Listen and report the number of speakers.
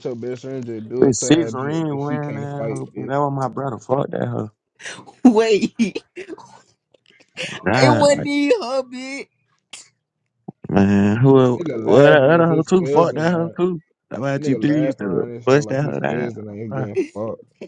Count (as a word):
three